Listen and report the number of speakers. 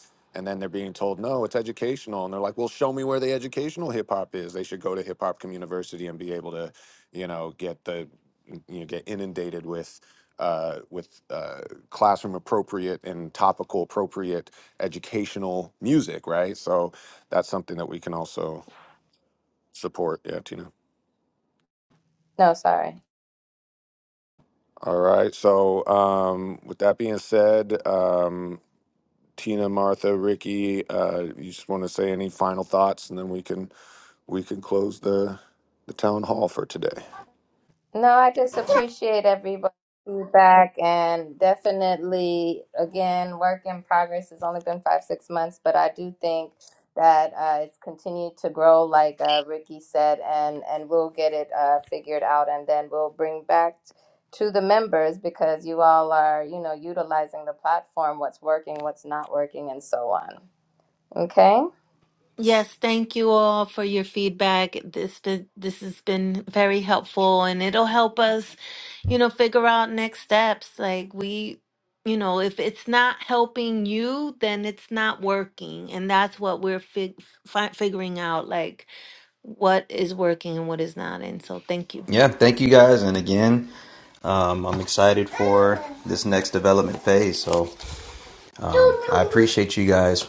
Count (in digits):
4